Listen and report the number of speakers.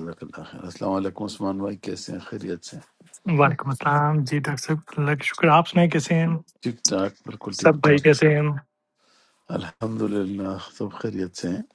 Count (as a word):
two